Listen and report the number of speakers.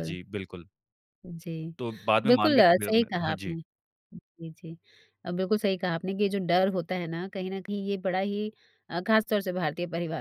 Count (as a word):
two